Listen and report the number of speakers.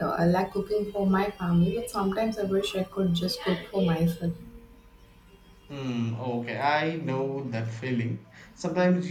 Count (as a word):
two